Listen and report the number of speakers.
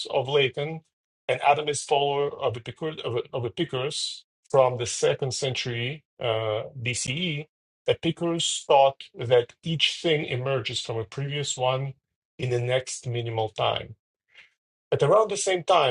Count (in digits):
1